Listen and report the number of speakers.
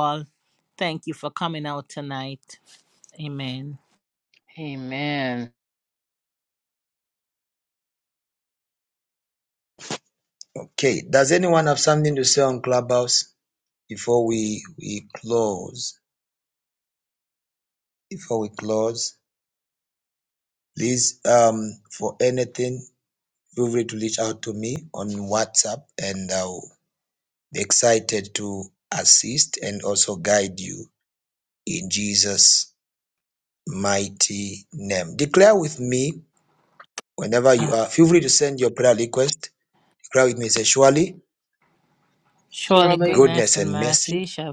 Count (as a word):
three